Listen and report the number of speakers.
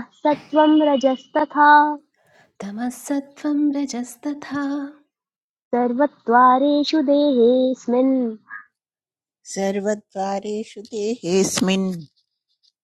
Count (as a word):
three